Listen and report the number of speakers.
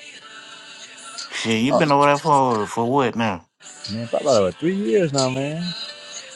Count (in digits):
2